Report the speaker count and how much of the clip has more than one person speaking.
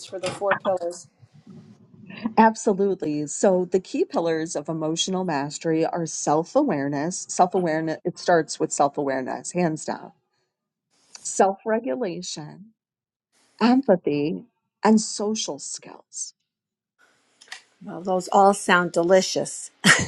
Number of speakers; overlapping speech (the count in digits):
2, no overlap